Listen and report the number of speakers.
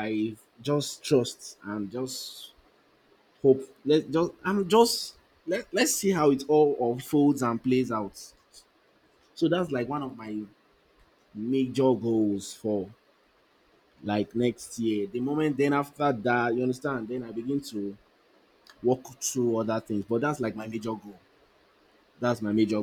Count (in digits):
1